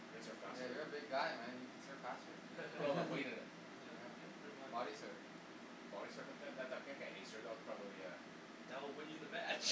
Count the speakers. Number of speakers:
three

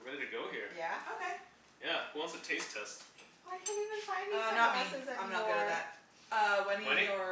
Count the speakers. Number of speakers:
three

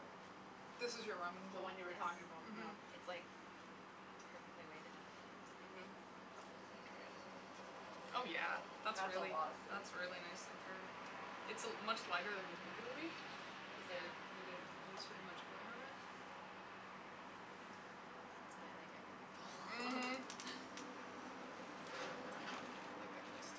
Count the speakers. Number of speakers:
three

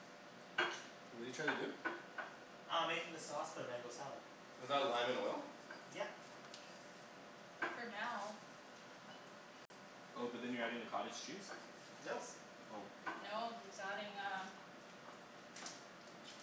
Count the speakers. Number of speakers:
four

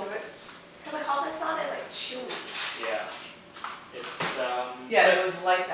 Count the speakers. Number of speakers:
three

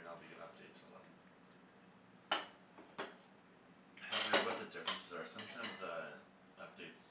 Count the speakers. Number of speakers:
one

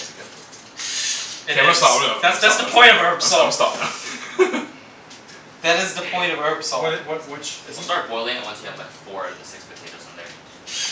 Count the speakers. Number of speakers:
four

